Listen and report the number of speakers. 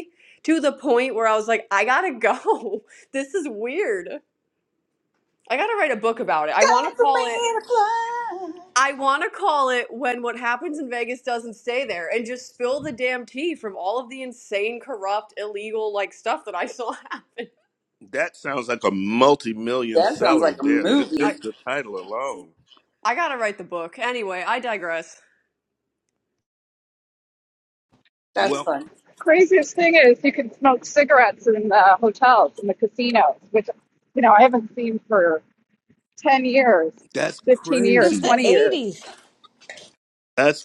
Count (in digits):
4